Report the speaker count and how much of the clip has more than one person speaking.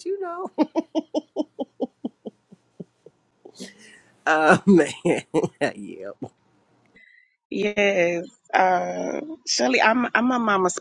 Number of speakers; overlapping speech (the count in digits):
2, no overlap